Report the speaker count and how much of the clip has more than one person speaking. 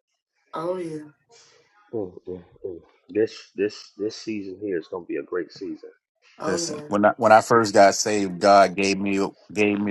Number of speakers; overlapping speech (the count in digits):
3, about 4%